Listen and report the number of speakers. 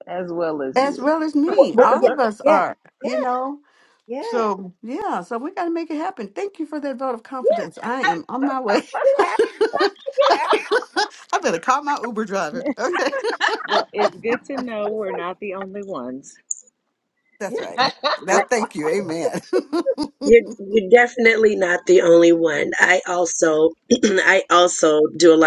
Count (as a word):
five